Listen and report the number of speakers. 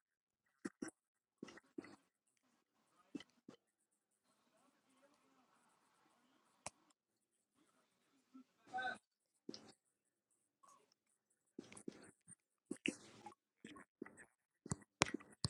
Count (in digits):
0